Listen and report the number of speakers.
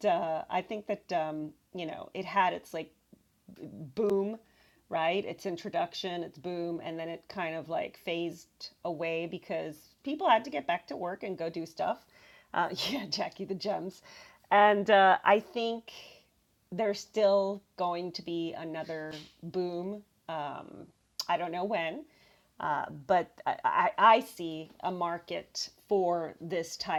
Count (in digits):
1